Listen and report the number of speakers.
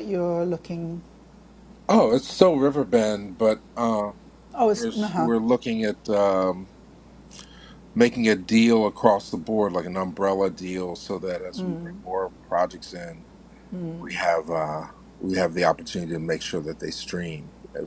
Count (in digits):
2